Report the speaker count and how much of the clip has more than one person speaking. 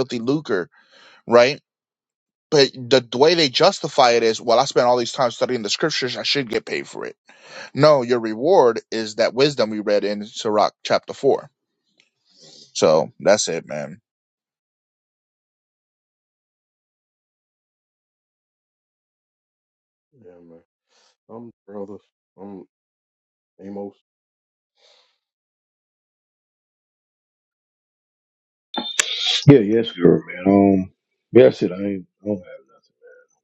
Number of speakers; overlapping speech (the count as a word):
three, no overlap